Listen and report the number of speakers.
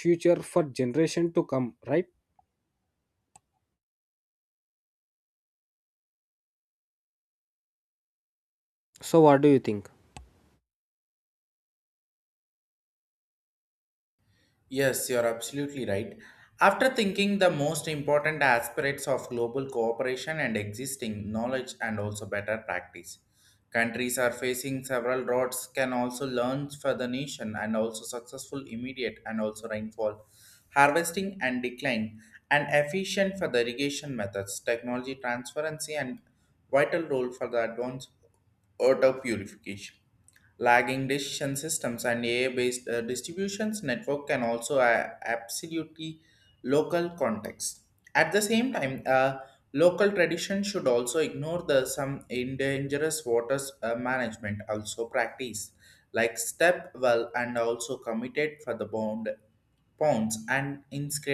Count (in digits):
2